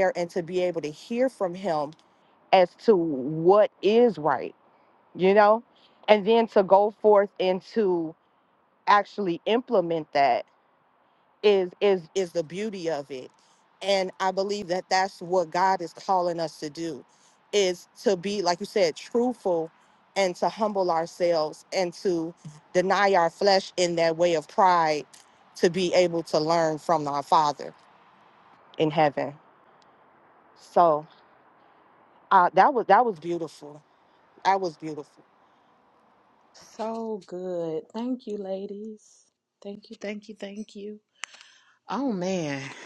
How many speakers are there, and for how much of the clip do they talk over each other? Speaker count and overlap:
two, no overlap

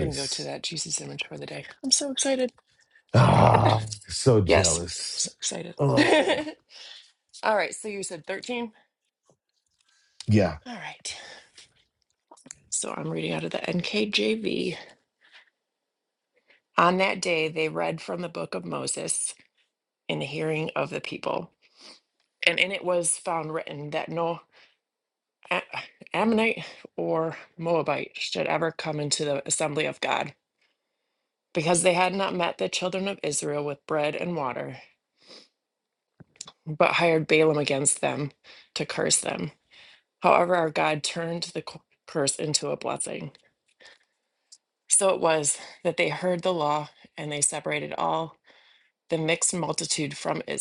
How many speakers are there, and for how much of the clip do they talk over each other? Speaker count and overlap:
two, about 2%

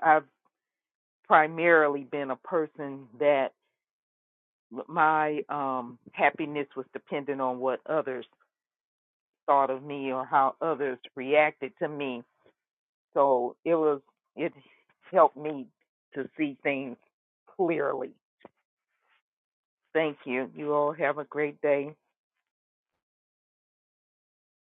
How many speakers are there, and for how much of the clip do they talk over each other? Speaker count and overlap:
one, no overlap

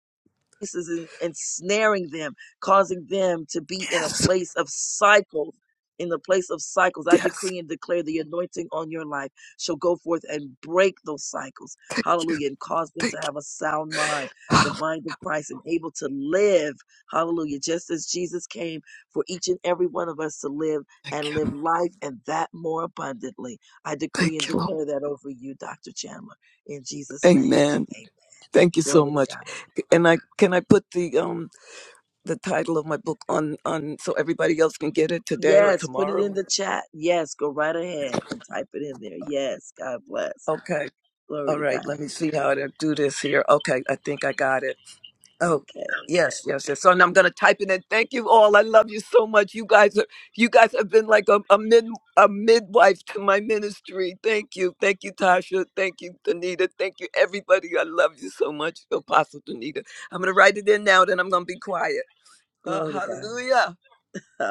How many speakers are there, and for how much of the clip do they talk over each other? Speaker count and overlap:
two, about 9%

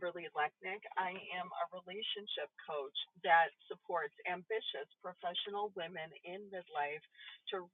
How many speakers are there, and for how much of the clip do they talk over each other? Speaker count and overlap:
one, no overlap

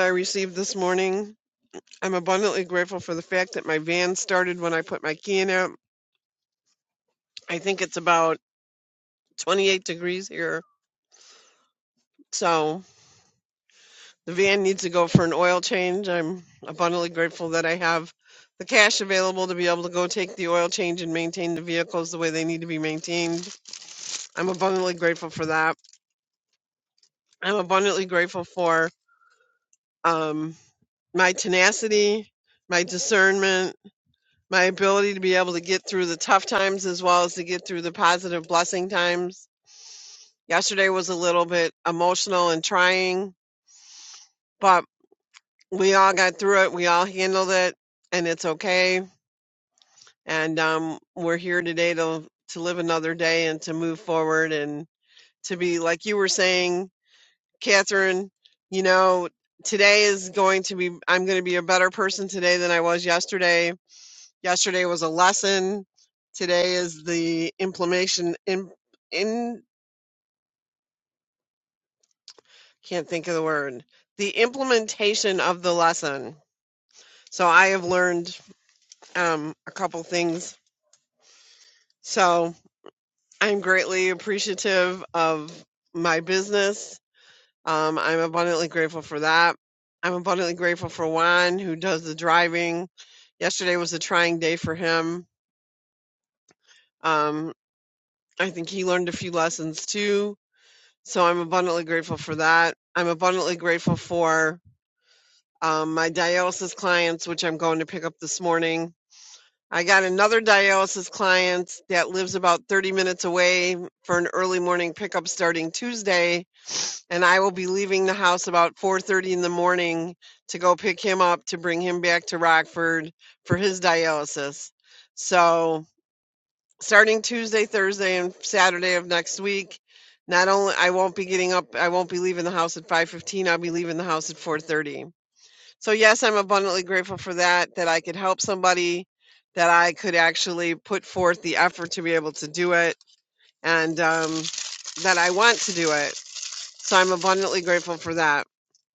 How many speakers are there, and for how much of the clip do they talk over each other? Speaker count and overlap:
one, no overlap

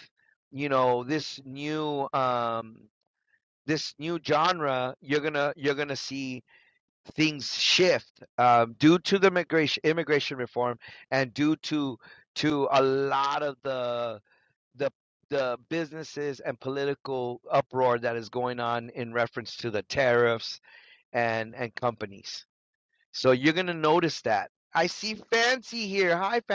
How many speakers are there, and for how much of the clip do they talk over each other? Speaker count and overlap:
one, no overlap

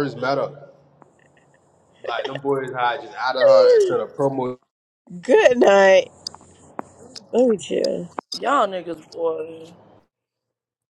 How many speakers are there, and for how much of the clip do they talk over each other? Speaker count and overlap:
three, no overlap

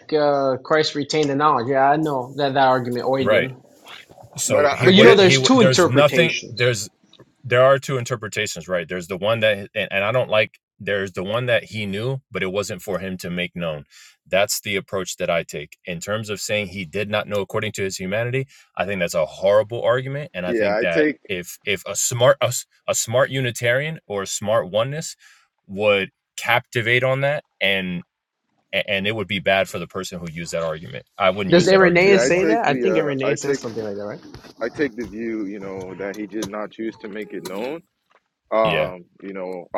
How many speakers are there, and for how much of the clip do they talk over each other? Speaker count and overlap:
three, about 14%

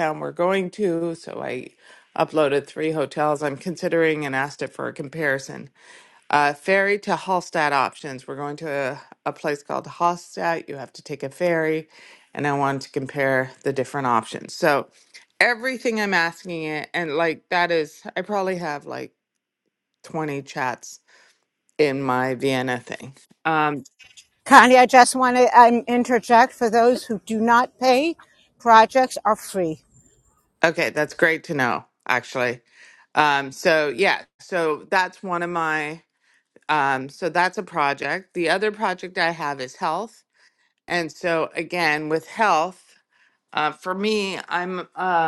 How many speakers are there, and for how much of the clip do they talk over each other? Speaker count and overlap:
two, no overlap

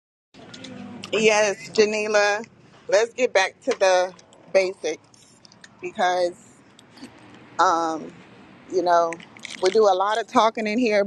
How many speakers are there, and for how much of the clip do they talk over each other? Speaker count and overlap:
one, no overlap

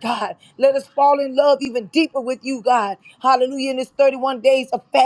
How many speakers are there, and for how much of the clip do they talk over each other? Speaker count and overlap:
one, no overlap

